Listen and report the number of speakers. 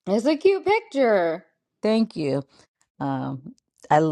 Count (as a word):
two